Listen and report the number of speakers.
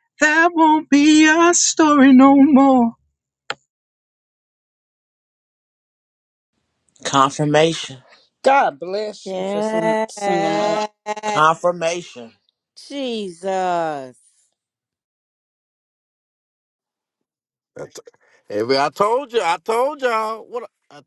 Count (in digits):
5